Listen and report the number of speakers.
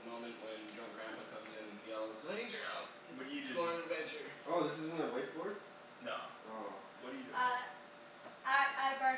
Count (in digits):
4